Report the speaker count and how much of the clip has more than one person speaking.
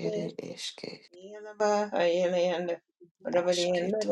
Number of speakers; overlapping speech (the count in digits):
2, about 27%